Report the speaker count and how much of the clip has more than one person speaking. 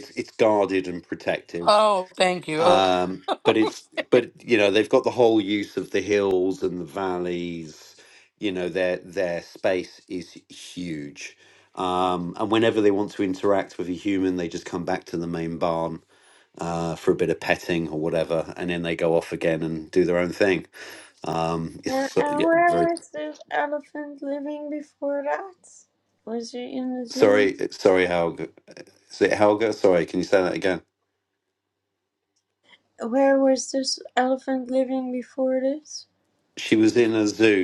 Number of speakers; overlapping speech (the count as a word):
three, about 5%